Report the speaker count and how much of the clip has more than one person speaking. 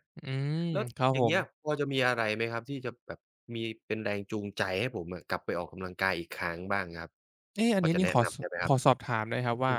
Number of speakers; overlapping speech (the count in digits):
2, about 14%